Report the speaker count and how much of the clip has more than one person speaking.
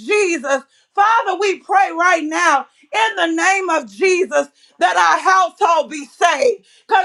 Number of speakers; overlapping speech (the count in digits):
1, no overlap